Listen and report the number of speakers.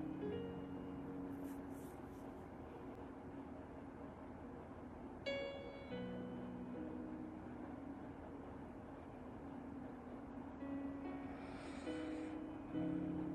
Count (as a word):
zero